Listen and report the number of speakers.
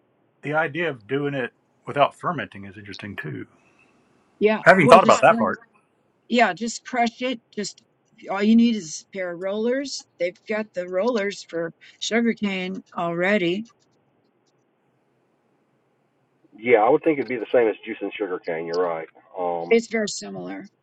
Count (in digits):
3